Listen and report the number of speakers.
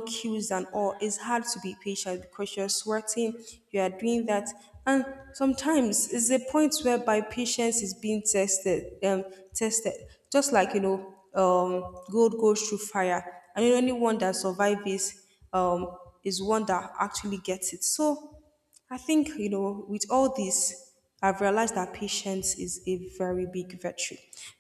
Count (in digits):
1